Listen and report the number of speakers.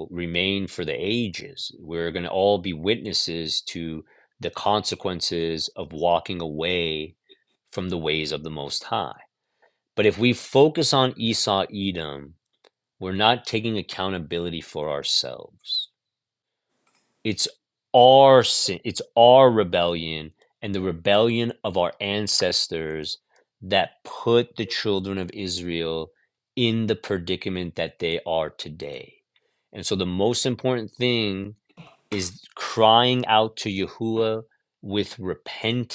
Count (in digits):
1